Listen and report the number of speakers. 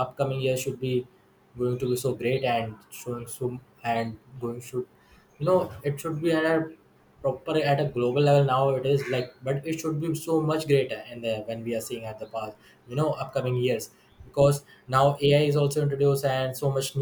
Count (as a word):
one